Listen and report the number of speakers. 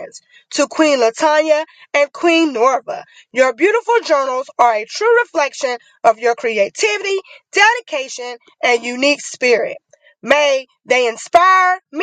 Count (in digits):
1